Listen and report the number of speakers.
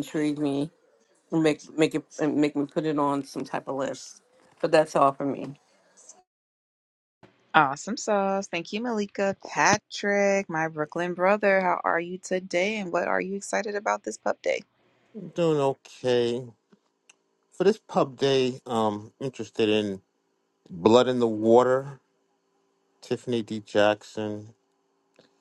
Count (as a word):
three